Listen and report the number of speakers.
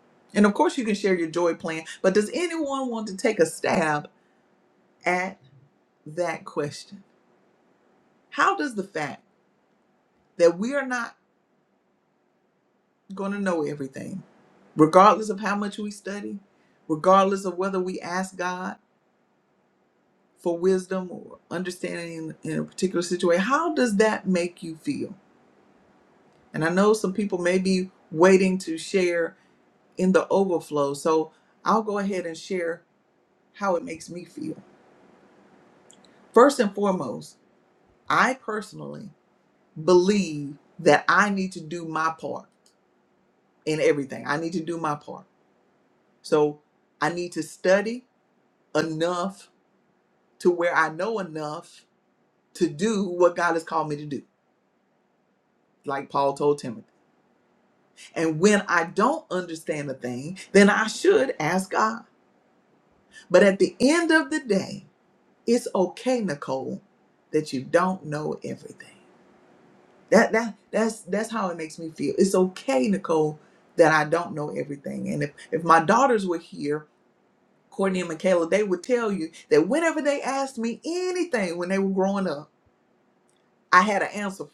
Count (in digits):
1